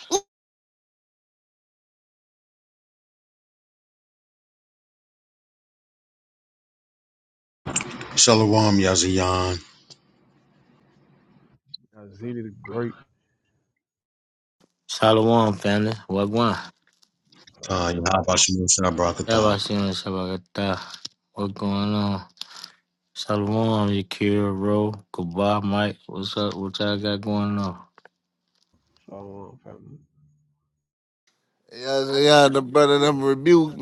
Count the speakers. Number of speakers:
4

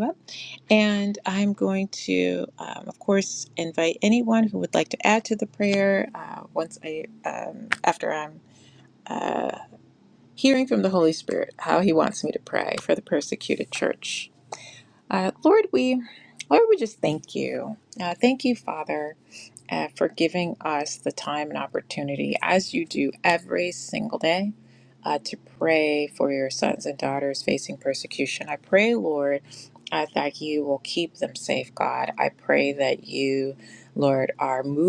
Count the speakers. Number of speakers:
1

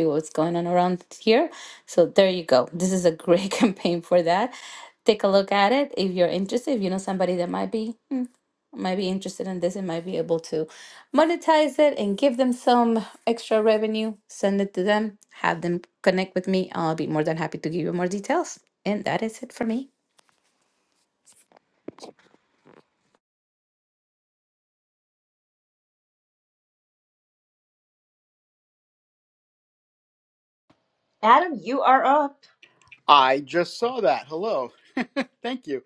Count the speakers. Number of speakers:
3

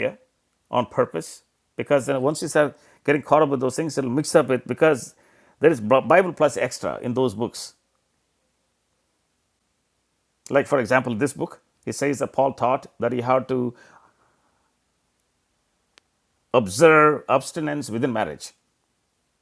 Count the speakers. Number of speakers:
1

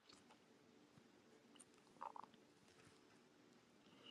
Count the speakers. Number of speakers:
0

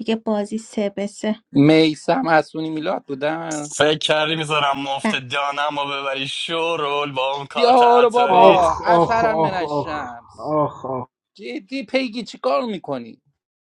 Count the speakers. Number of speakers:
4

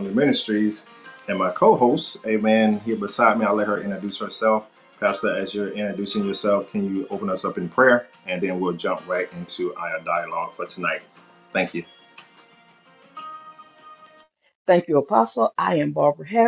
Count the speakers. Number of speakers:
2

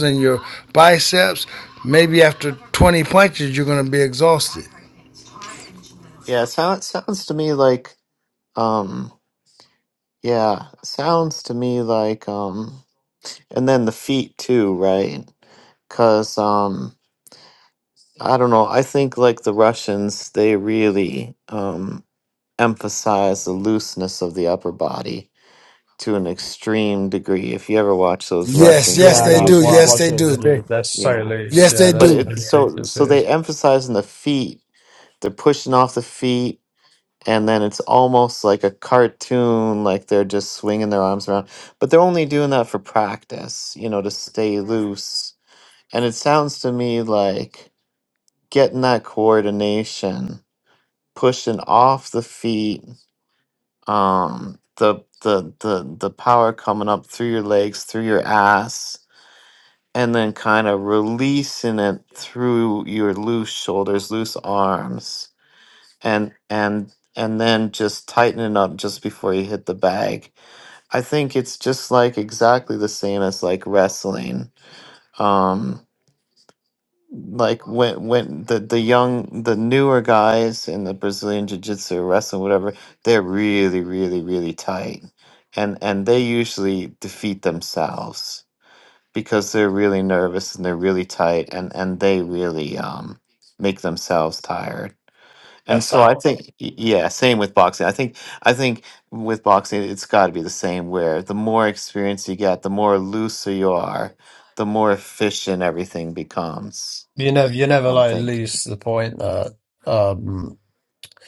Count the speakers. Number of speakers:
3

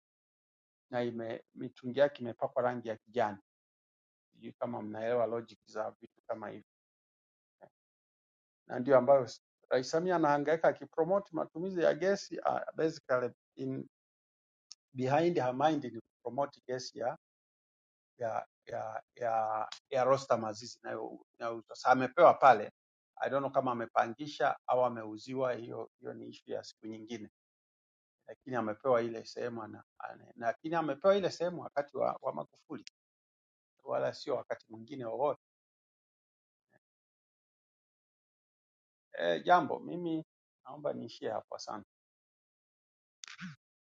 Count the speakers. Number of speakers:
1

